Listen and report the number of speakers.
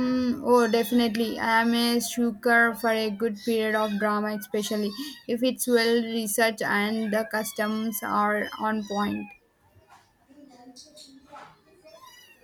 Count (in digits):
1